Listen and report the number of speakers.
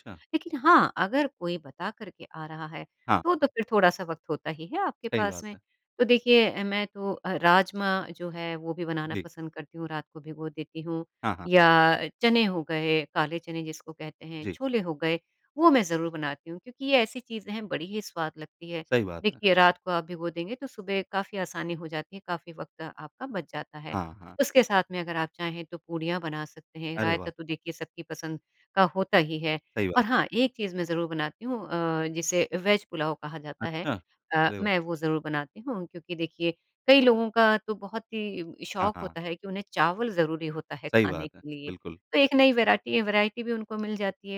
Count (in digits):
2